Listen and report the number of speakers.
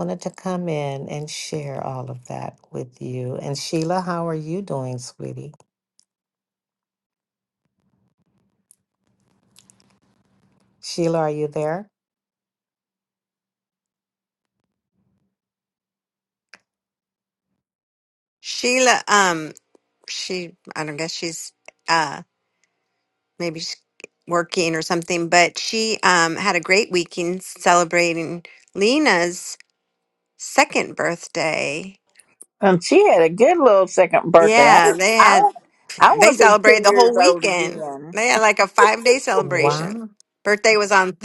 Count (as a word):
three